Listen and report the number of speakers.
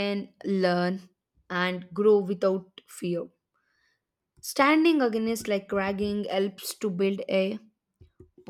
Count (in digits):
1